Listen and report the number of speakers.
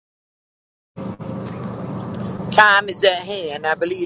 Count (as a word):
one